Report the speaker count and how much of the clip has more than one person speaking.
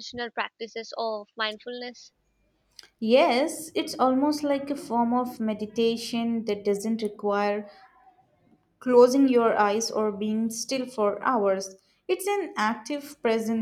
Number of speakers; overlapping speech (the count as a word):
two, no overlap